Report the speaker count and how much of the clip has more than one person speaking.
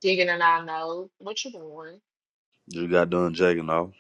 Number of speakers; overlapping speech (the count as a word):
two, no overlap